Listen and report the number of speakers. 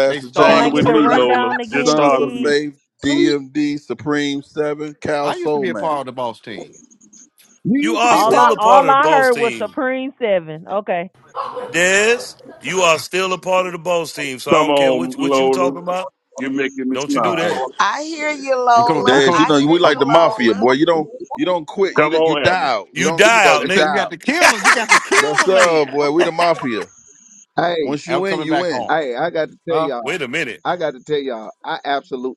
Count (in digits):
7